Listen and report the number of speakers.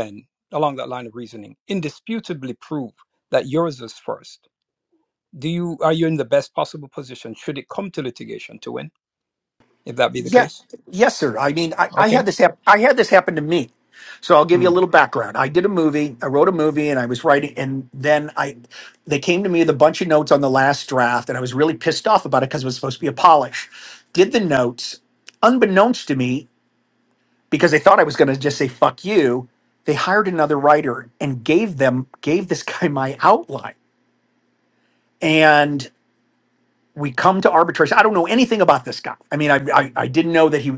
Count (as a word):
two